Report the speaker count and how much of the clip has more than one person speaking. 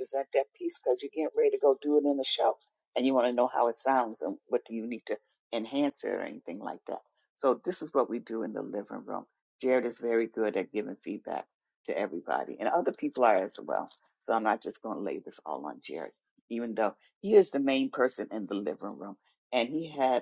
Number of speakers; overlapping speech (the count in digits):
1, no overlap